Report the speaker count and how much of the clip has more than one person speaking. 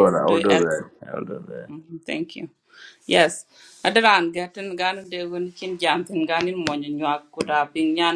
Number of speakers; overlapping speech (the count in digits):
2, about 8%